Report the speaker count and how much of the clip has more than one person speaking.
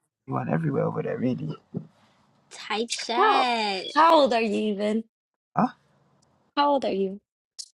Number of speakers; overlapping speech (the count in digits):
3, about 4%